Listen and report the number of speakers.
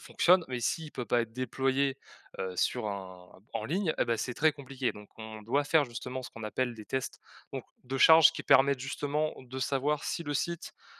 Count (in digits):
1